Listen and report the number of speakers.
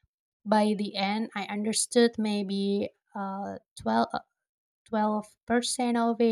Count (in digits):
1